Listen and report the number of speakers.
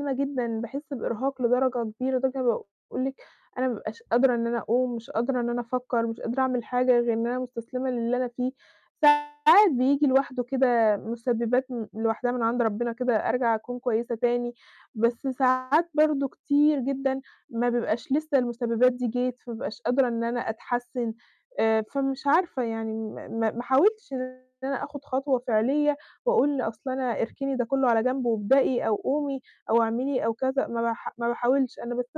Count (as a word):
one